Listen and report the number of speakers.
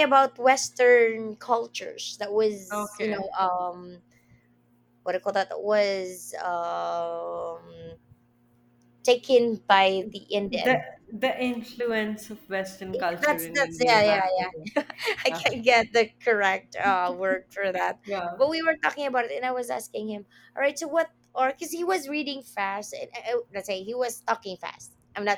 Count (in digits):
2